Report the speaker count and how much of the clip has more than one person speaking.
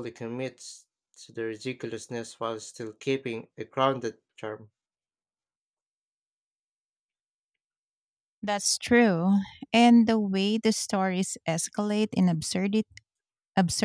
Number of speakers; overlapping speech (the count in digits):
2, no overlap